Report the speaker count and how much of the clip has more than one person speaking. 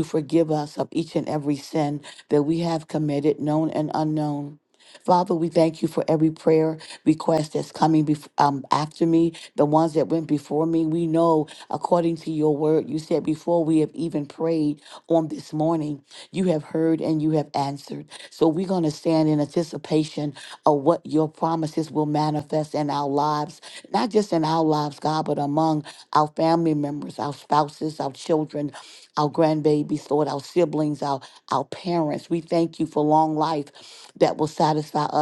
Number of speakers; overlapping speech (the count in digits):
1, no overlap